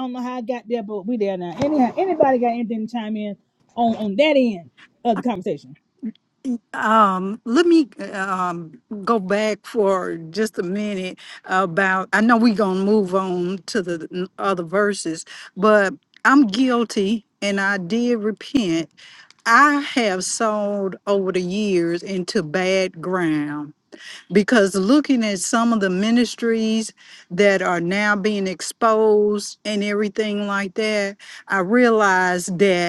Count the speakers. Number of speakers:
2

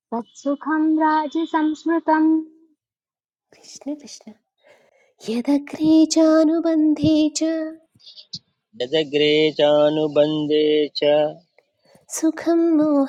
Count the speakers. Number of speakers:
3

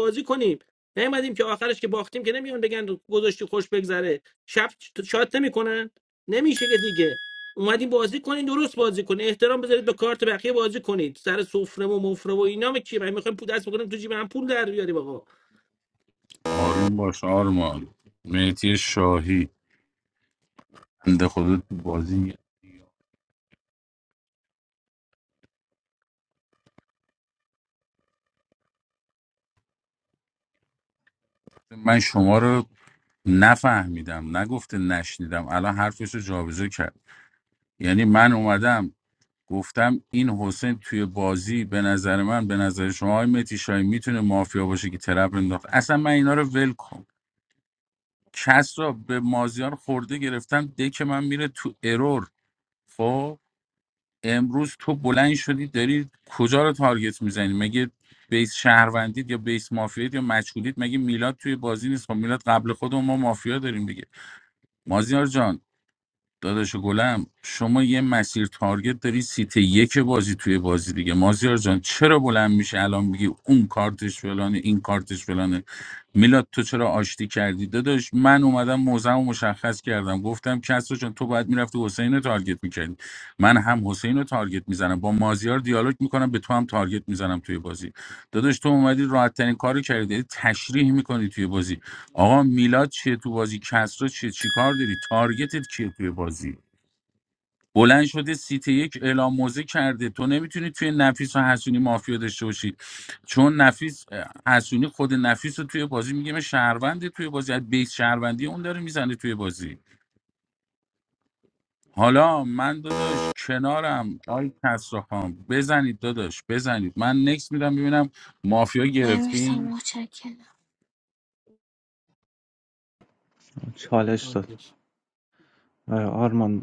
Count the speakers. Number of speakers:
4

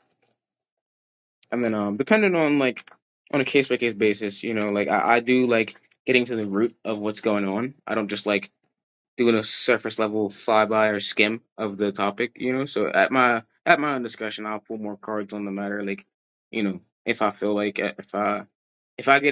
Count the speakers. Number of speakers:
1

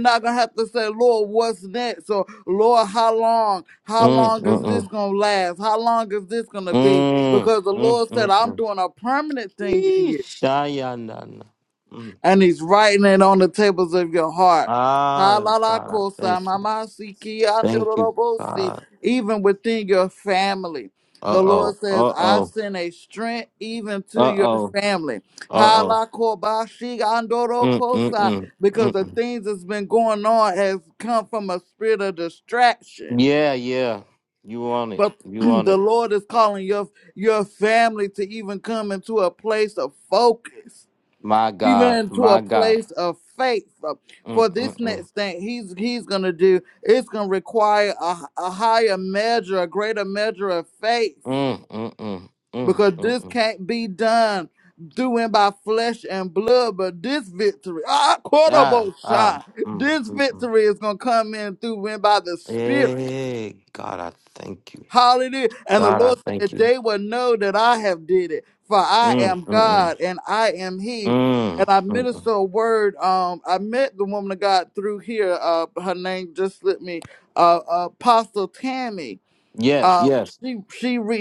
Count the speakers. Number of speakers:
2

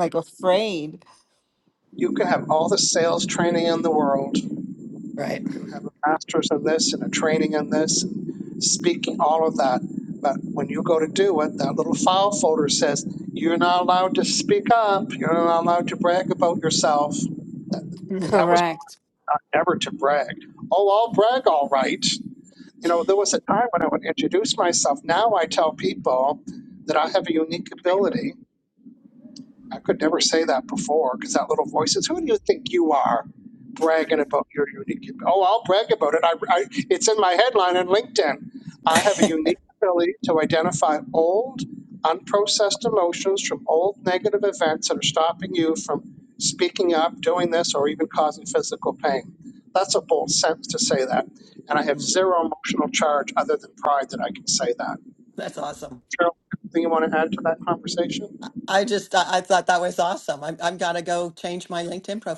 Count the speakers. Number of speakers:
3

